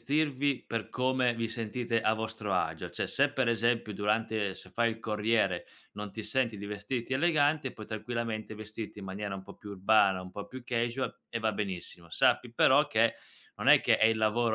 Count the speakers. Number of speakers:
1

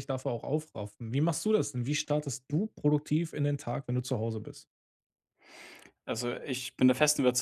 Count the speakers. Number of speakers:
2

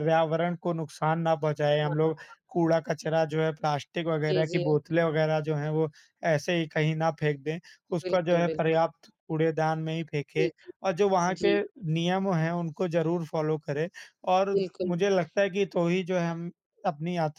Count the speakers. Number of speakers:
2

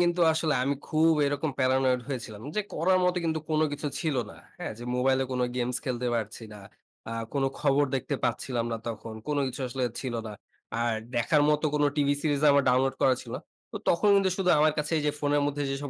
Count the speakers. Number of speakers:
1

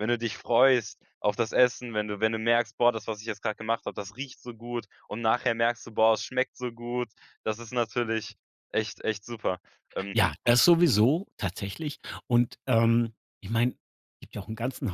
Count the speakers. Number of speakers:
2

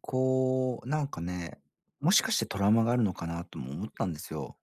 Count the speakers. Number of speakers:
1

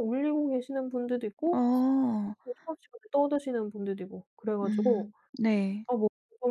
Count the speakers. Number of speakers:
2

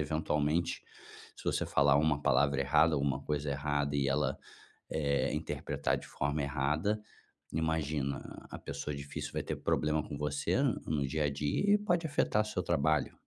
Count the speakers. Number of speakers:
1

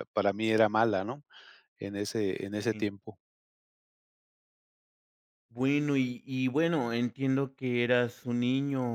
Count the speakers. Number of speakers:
2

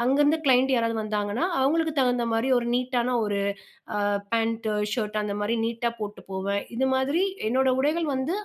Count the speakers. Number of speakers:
1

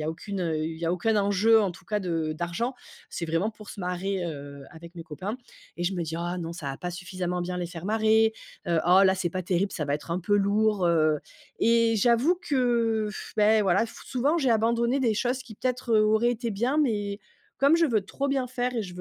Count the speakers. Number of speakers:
1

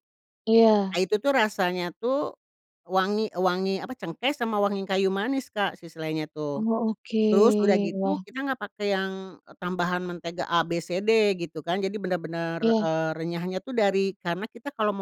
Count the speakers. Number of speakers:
2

